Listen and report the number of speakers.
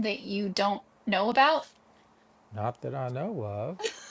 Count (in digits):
2